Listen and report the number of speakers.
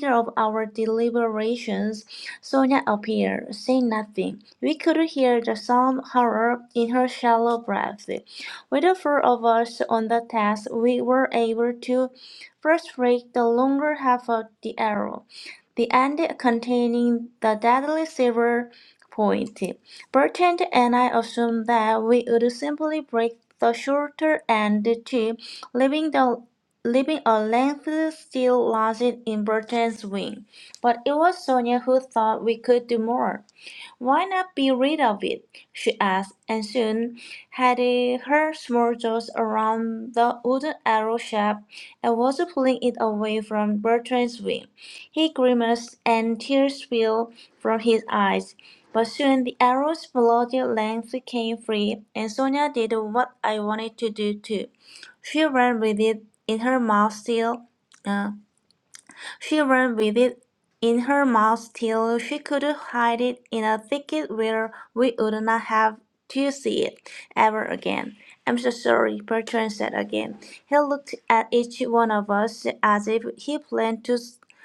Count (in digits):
1